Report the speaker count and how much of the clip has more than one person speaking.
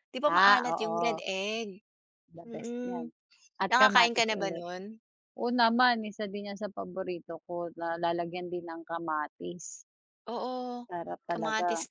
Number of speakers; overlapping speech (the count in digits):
2, about 25%